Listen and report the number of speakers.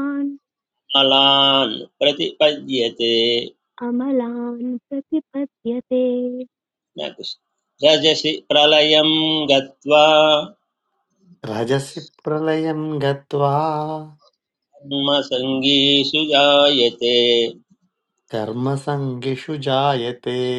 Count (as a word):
three